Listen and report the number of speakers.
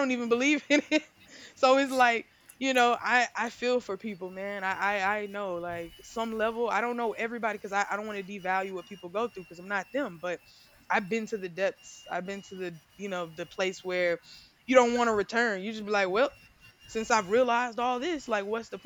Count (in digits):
1